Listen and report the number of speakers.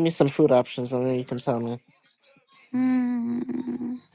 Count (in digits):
2